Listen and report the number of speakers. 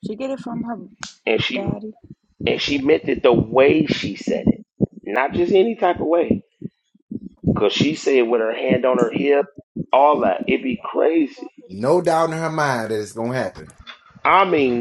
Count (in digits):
3